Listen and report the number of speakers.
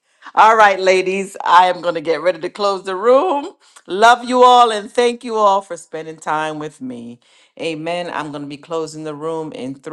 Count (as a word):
one